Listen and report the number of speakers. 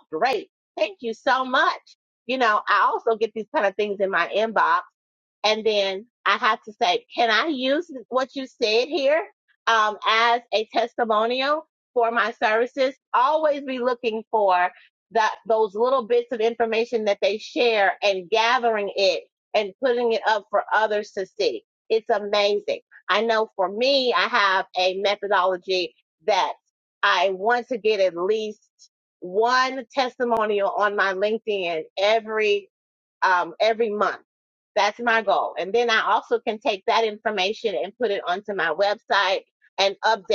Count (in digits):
1